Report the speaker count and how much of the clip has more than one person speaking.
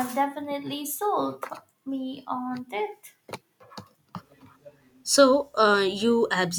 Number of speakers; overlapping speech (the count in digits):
2, no overlap